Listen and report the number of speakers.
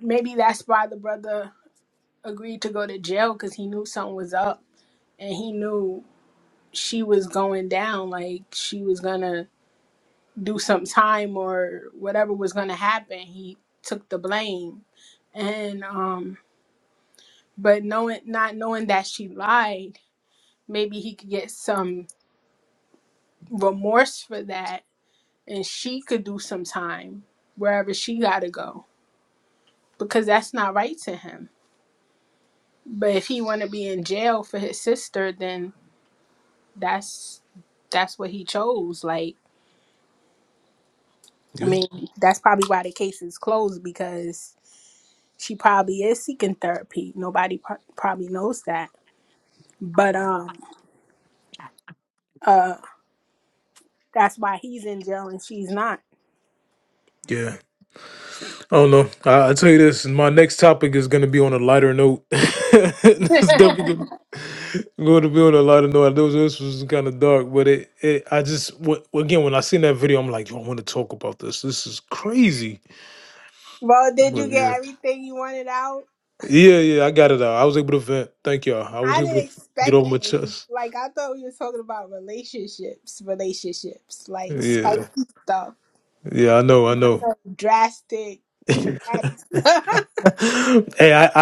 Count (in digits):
2